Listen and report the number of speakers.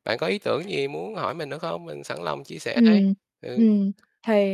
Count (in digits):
2